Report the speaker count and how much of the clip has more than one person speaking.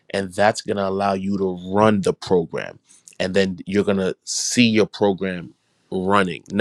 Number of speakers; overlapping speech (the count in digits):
1, no overlap